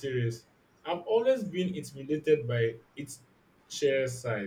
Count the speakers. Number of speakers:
one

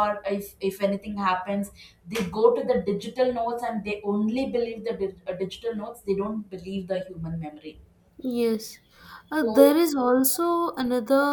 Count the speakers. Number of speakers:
two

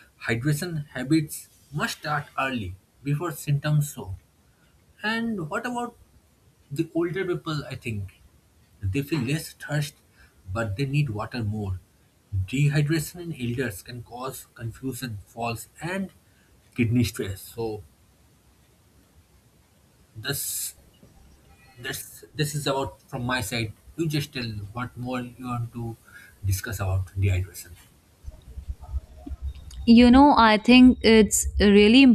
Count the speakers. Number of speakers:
two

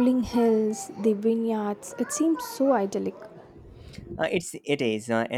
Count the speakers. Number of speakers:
two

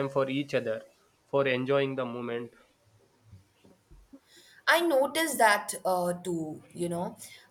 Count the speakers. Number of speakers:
two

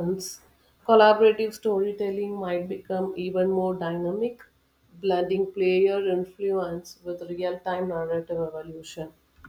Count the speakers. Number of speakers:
one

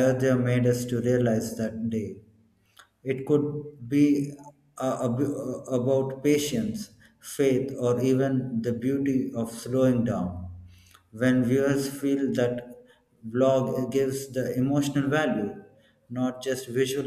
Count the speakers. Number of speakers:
one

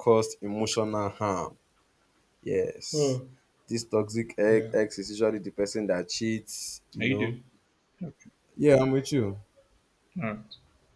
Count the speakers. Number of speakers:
two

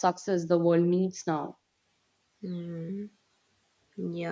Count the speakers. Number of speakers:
two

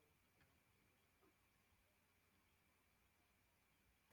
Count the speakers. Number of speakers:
zero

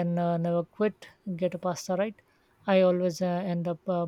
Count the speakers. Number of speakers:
one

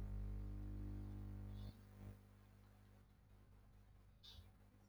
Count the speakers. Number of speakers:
zero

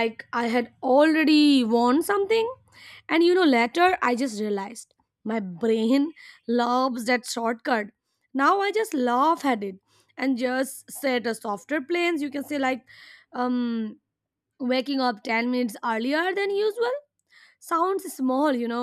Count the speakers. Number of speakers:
one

